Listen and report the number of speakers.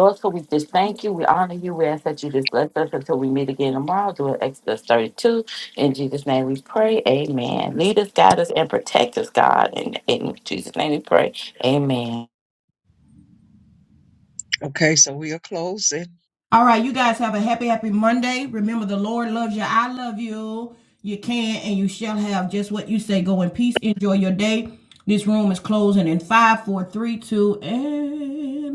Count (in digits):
3